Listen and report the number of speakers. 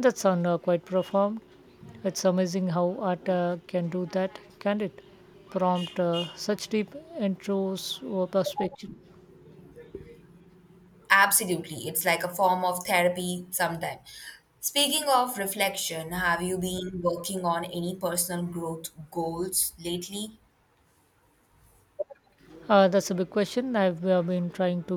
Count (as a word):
two